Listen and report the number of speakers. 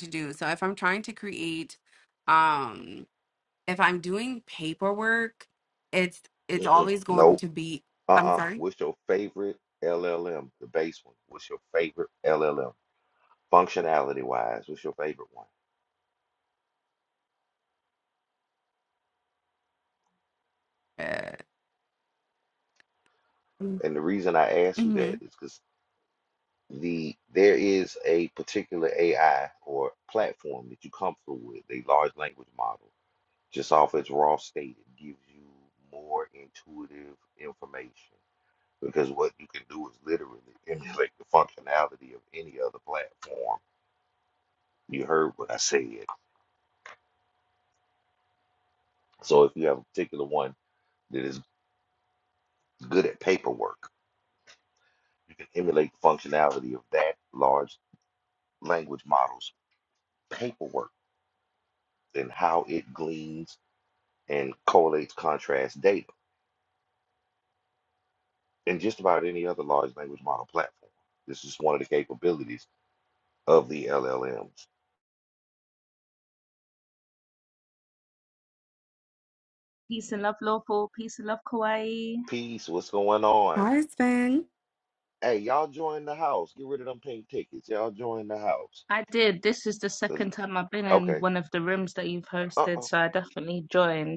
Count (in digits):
3